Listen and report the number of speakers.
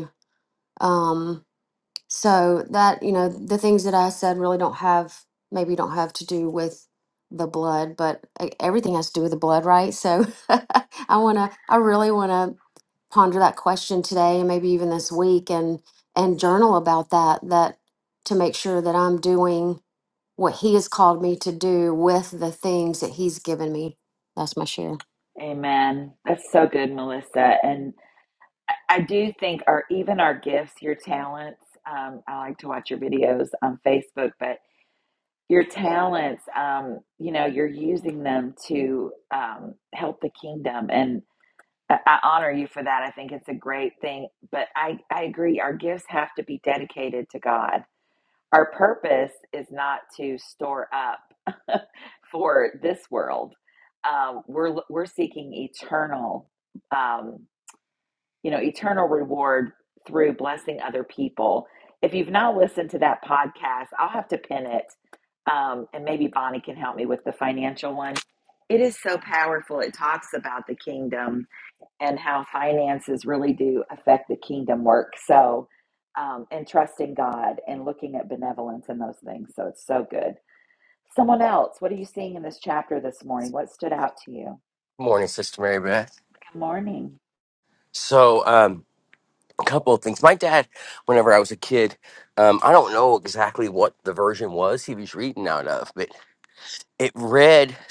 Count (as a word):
three